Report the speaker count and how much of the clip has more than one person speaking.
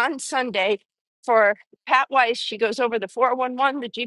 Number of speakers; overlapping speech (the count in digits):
1, no overlap